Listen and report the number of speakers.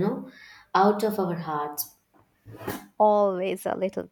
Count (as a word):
two